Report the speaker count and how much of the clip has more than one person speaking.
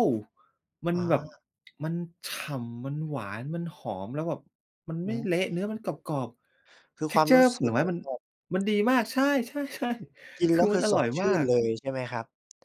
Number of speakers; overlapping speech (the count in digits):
2, about 18%